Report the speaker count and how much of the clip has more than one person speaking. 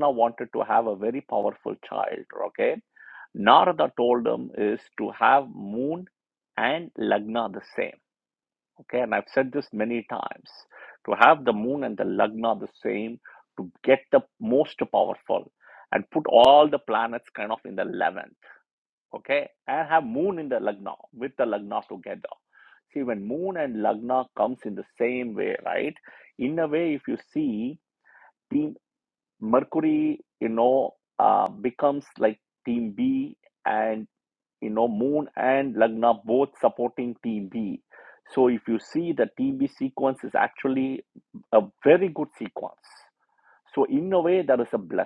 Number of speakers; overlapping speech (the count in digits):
1, no overlap